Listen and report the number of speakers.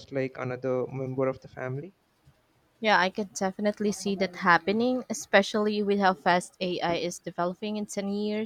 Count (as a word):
two